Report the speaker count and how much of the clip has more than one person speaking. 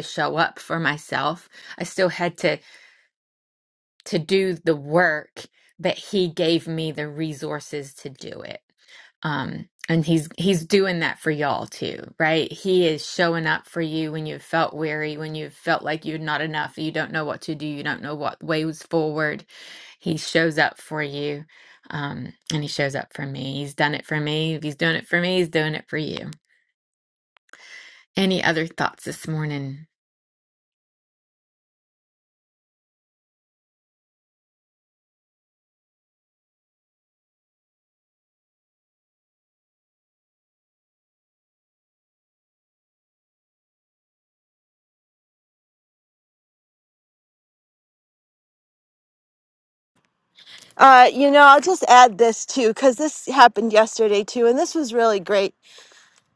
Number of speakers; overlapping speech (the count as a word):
two, no overlap